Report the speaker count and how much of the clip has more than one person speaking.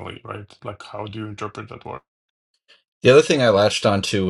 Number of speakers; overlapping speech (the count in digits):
2, no overlap